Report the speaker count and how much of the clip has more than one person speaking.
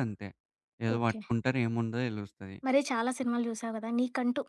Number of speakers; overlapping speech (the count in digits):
2, about 8%